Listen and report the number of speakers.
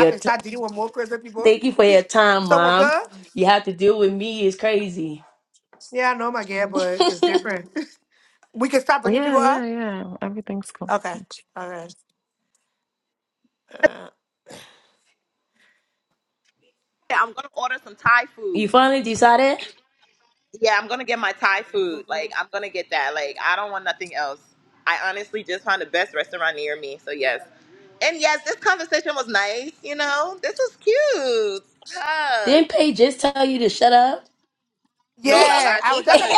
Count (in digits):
4